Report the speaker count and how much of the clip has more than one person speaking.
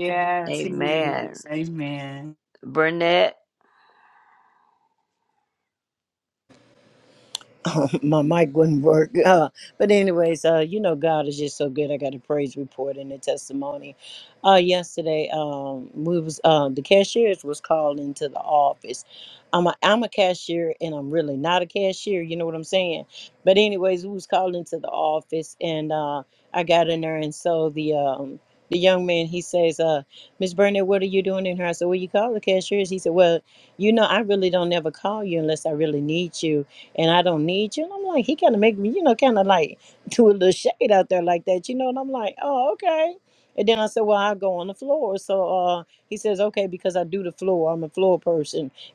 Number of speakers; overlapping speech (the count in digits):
3, about 1%